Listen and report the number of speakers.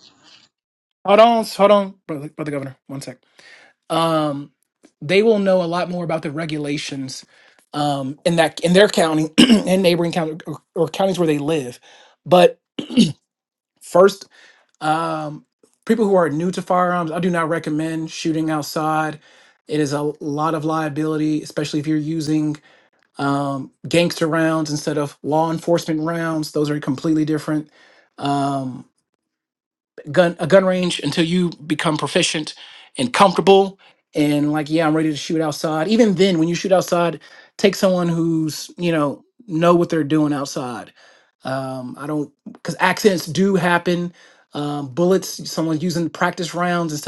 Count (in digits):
1